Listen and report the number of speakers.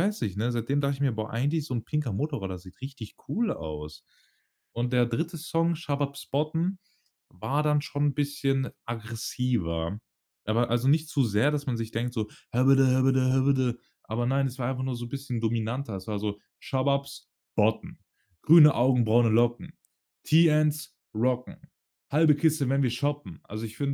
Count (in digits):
1